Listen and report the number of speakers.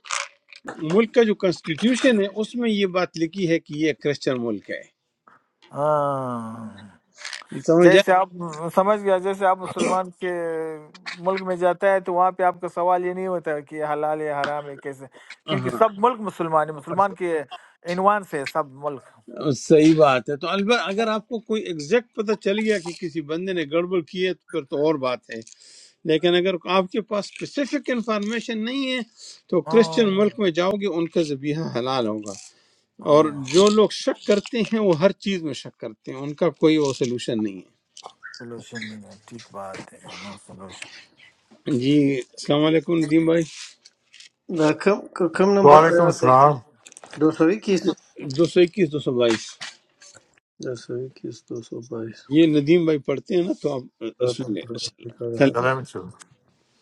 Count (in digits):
4